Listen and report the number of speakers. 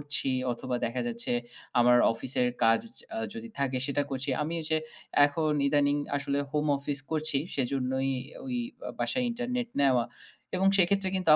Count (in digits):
1